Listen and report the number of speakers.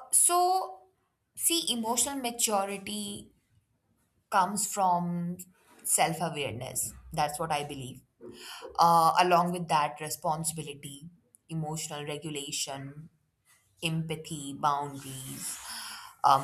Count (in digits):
1